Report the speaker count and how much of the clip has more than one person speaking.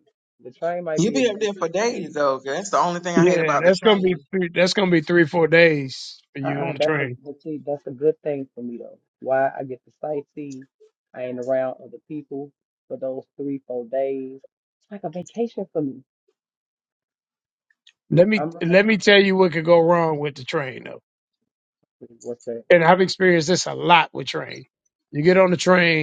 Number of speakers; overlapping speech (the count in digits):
3, about 12%